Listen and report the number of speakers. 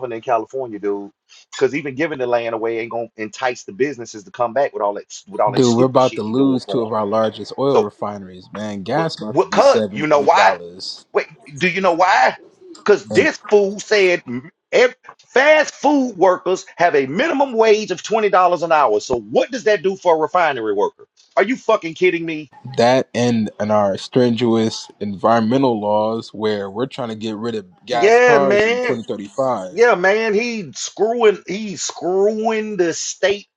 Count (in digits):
2